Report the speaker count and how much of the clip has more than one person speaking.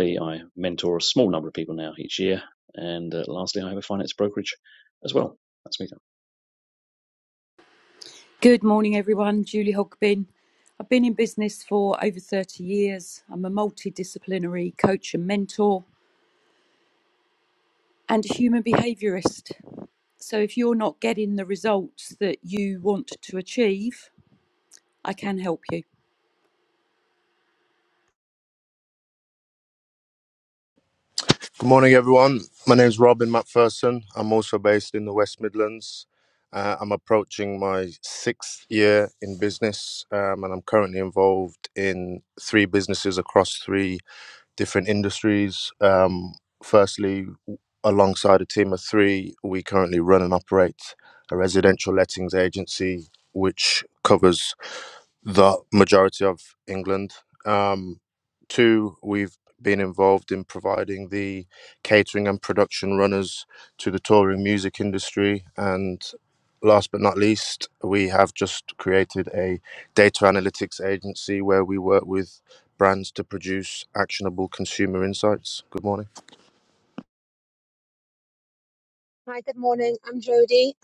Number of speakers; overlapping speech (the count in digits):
4, no overlap